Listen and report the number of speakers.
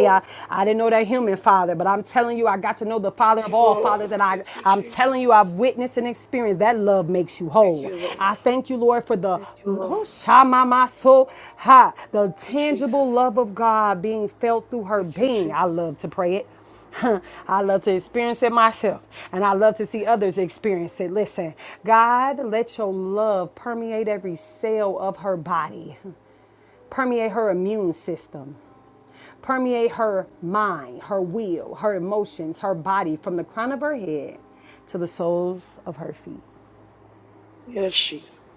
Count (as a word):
two